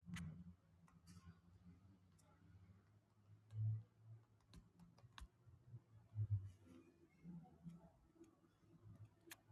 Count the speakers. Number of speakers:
zero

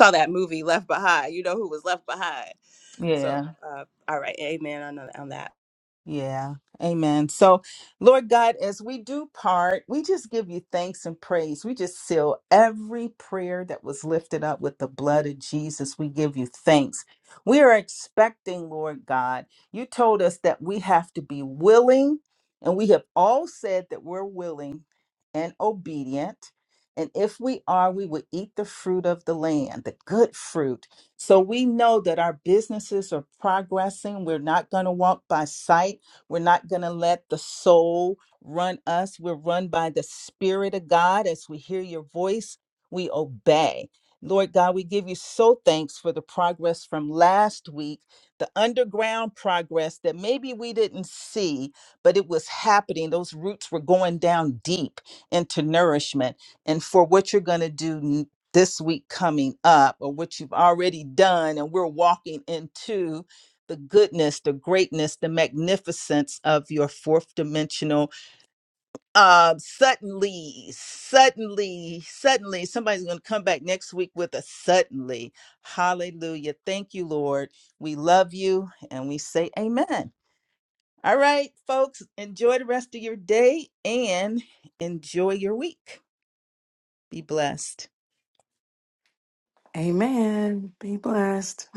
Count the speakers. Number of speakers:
three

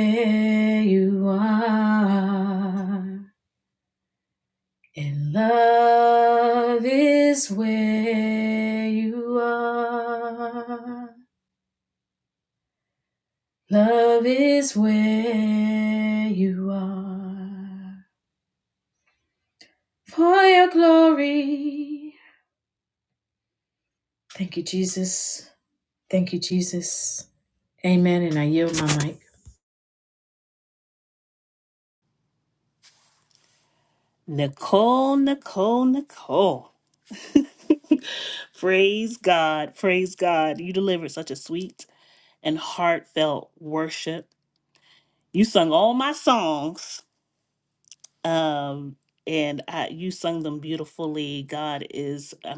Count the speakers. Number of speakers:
two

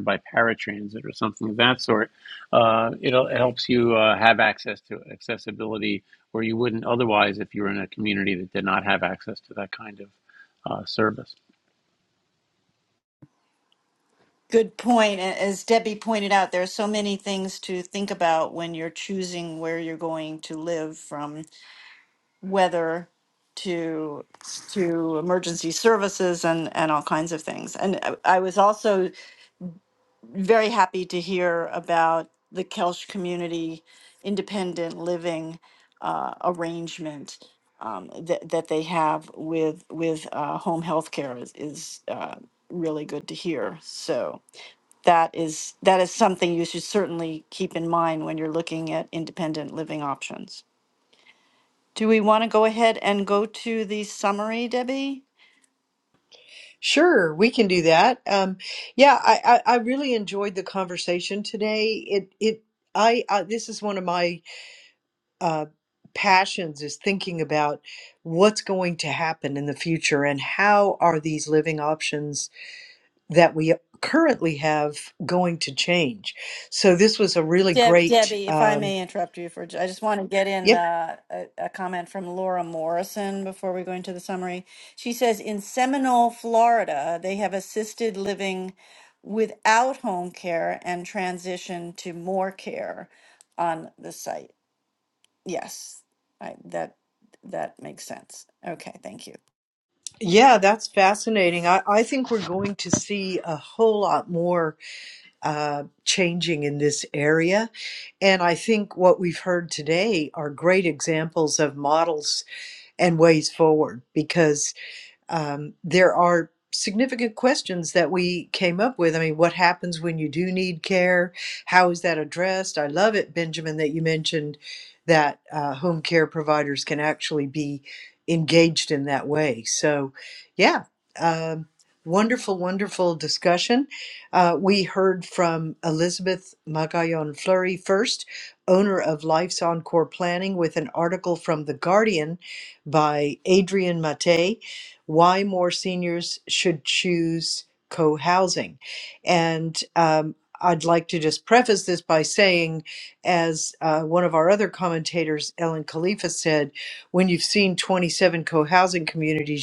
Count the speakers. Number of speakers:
three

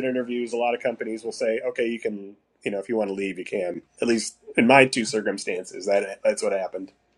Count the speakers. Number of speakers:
one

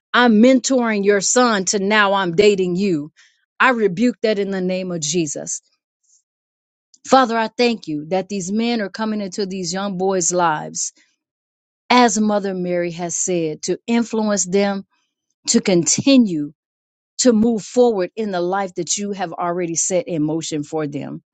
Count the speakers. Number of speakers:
one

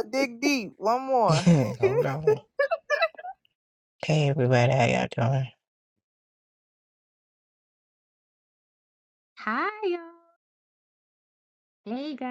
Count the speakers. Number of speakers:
three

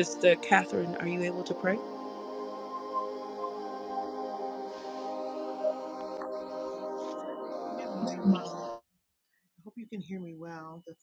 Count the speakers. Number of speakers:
two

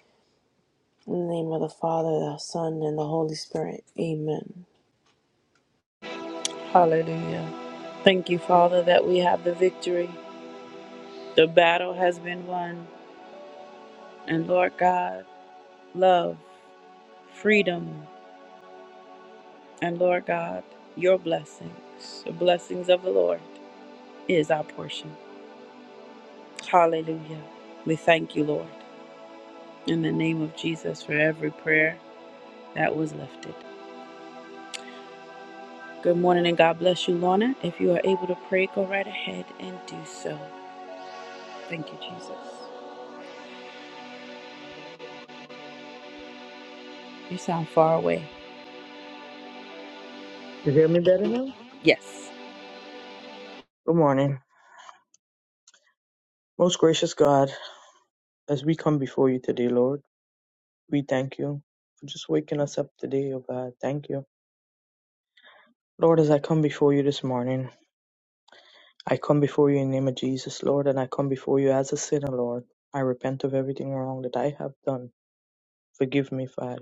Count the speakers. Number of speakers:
three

